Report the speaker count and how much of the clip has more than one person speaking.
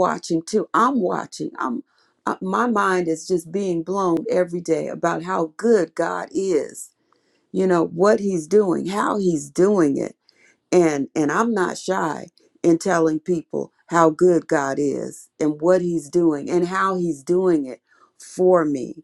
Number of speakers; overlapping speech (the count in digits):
1, no overlap